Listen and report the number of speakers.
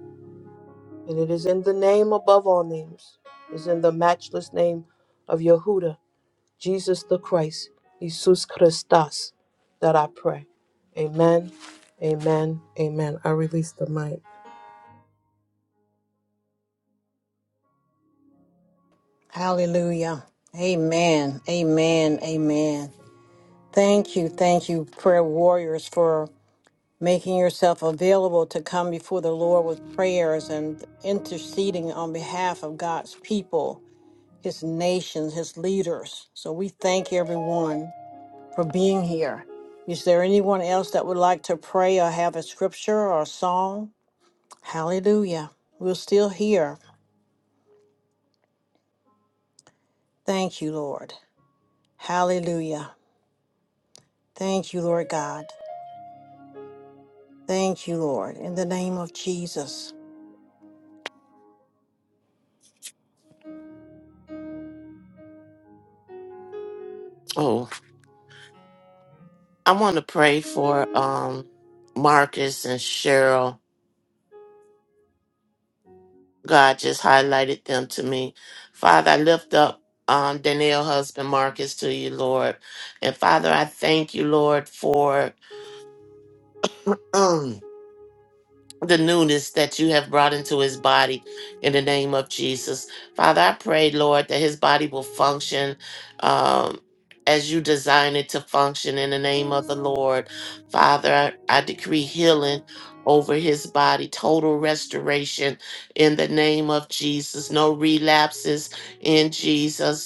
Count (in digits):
3